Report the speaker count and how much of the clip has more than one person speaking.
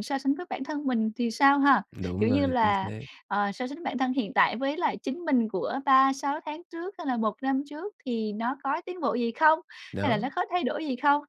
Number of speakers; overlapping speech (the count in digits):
2, about 9%